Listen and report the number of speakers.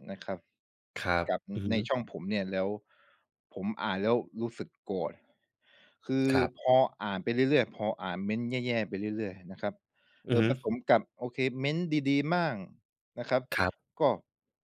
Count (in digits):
2